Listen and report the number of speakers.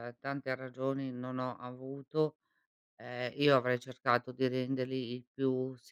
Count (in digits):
1